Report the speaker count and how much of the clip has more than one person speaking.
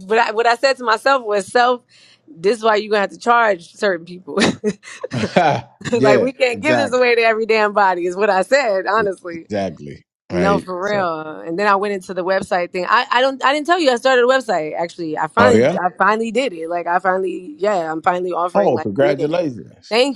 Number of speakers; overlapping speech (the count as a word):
two, about 17%